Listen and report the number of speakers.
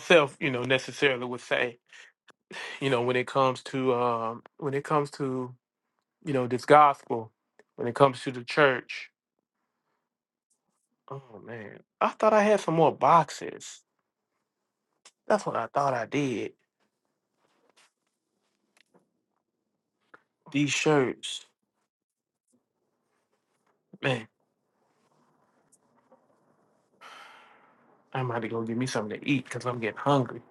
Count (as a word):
one